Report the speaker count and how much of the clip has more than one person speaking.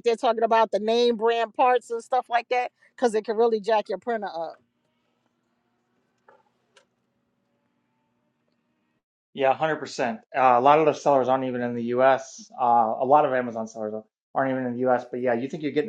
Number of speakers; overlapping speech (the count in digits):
2, no overlap